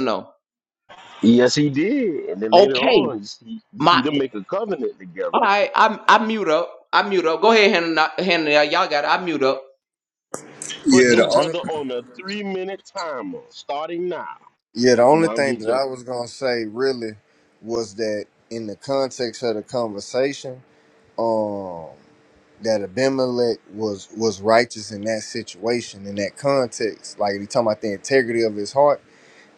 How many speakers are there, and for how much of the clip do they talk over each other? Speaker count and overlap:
3, about 8%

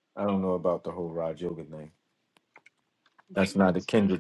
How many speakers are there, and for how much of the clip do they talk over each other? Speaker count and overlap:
1, no overlap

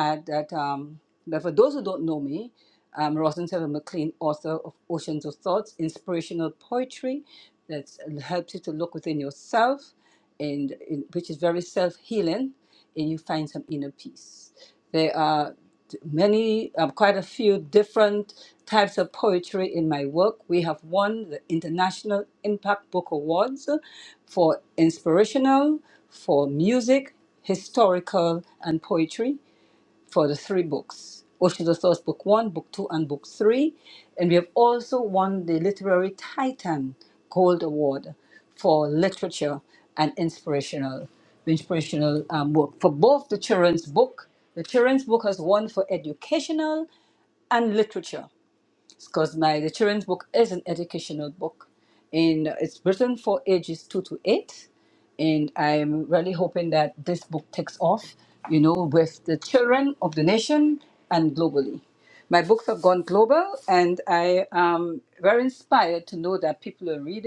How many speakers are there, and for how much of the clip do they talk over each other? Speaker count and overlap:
1, no overlap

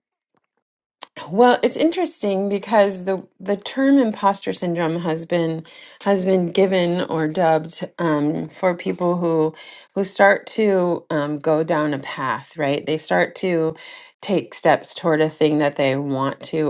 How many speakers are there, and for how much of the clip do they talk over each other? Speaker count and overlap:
1, no overlap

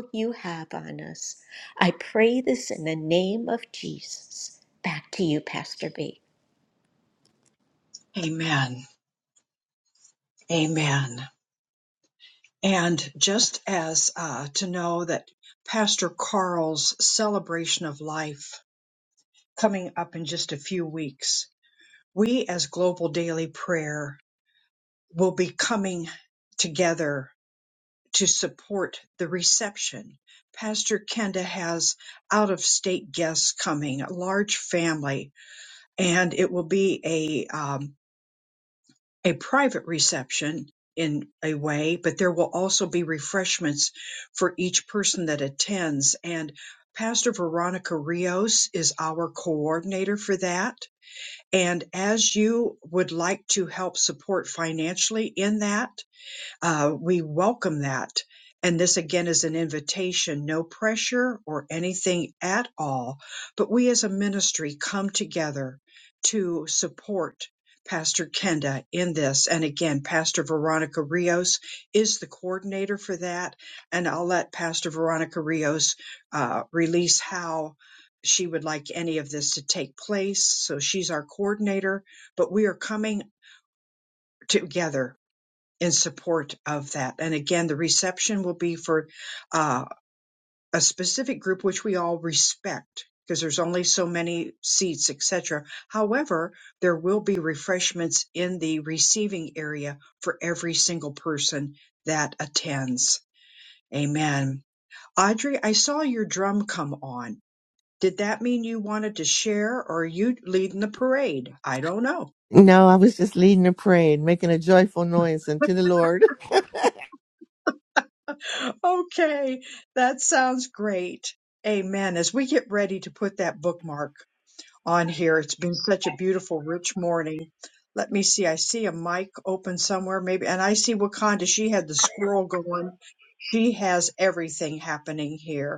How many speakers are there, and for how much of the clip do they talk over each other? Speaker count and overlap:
3, no overlap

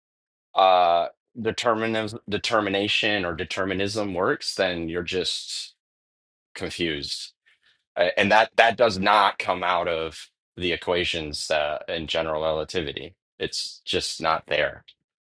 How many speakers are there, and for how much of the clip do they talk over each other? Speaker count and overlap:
1, no overlap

